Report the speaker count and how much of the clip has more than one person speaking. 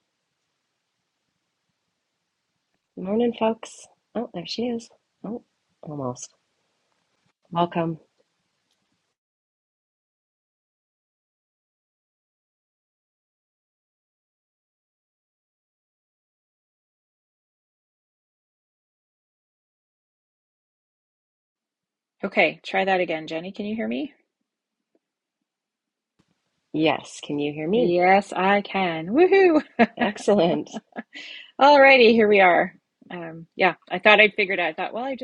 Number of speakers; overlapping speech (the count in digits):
2, about 1%